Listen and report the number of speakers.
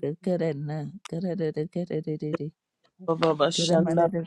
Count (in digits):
2